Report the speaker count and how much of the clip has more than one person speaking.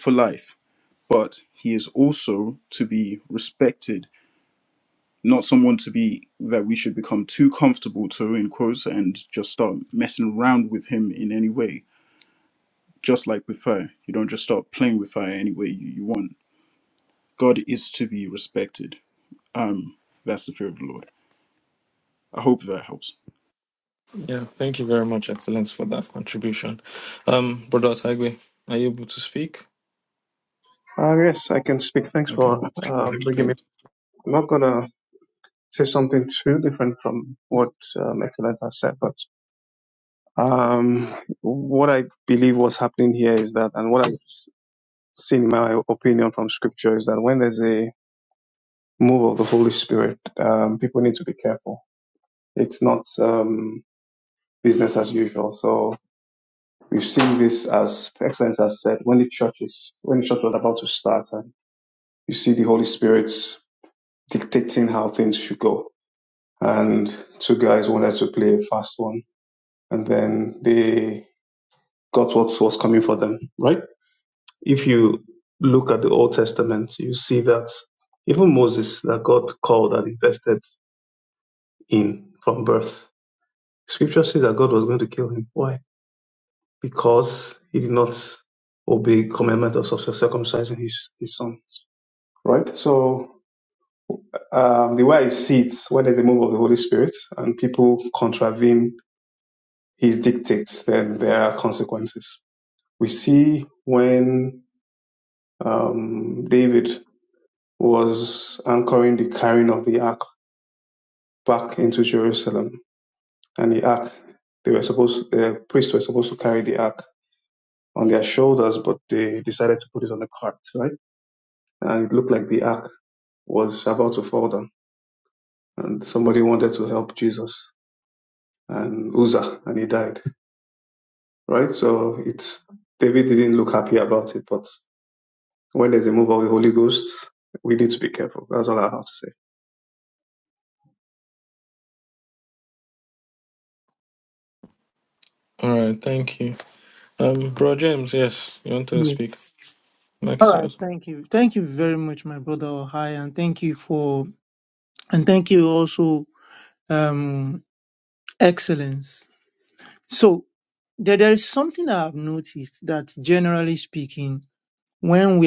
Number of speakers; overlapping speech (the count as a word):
four, about 1%